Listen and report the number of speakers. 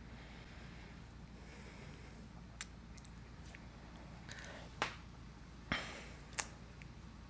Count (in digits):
0